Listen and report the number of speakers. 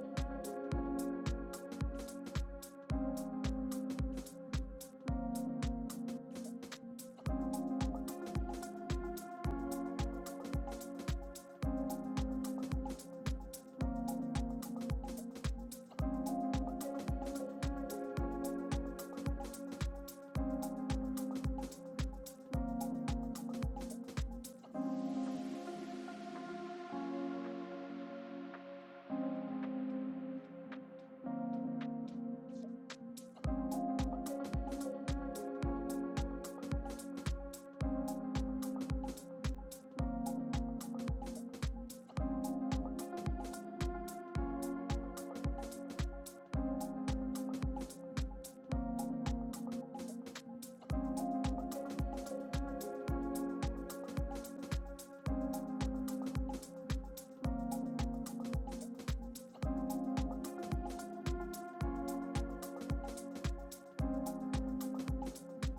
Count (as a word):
zero